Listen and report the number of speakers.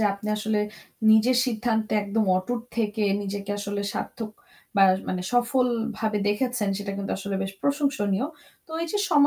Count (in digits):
1